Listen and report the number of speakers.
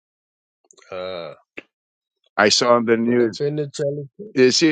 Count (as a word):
two